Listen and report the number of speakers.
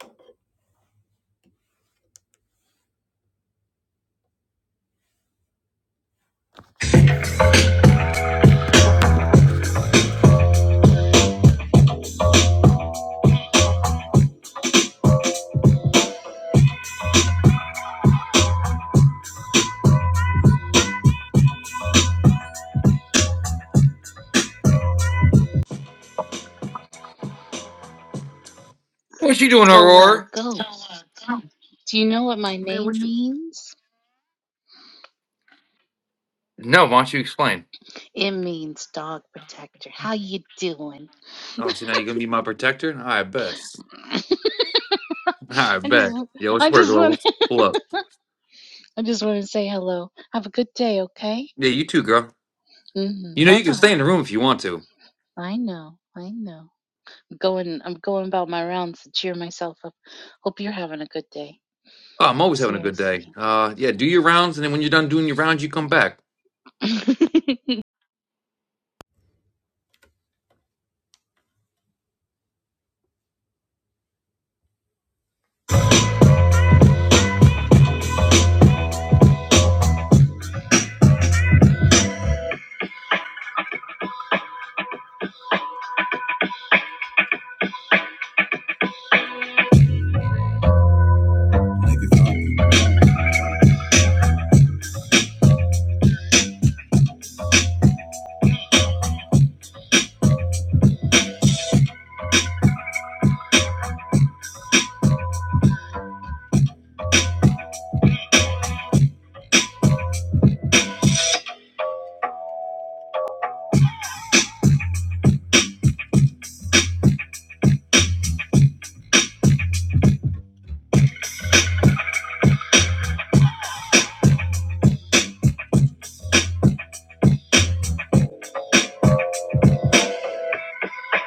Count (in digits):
2